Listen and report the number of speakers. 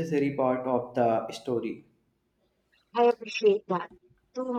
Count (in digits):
2